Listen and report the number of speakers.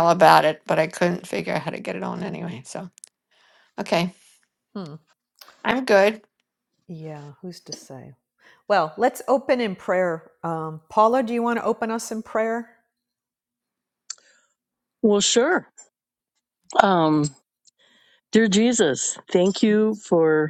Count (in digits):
3